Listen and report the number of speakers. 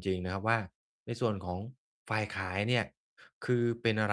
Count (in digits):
1